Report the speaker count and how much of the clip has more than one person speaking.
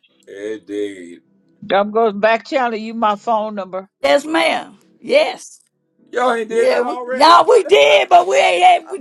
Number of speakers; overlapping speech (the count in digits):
3, about 10%